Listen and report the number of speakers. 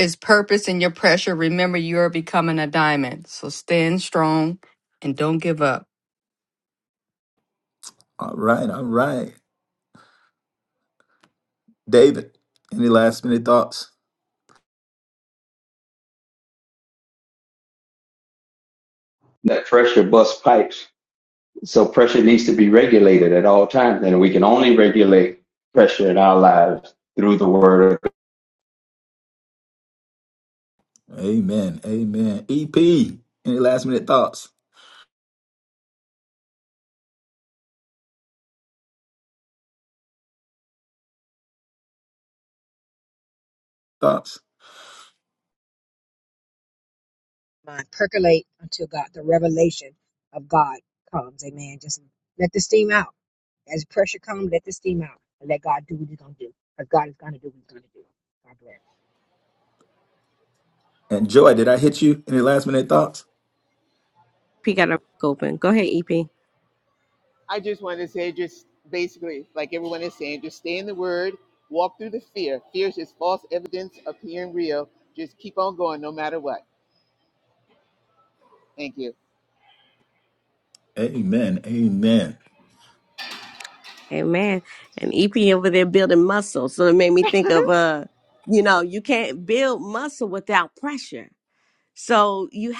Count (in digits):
6